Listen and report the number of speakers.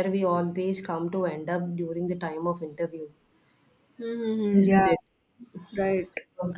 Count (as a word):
two